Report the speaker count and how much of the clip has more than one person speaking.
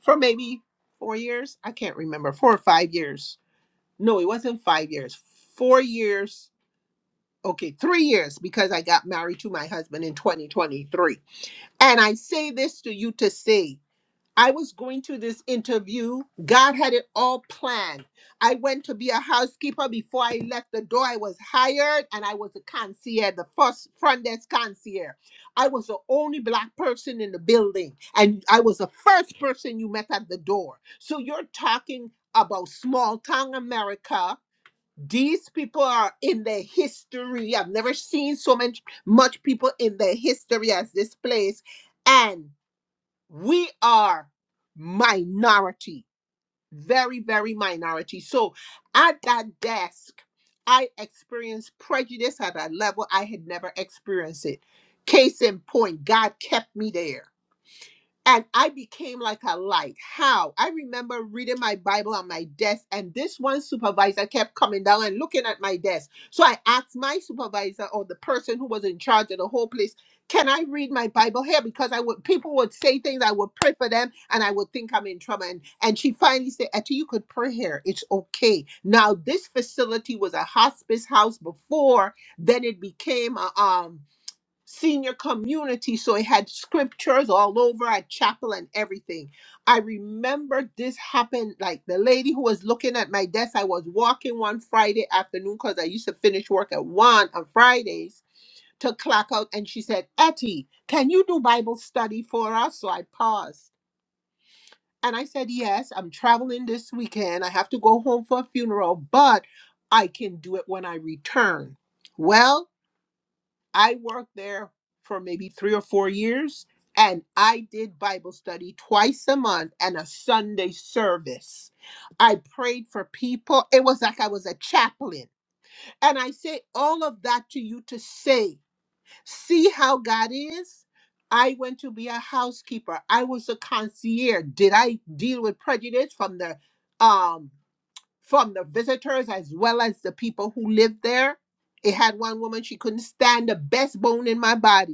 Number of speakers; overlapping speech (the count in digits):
1, no overlap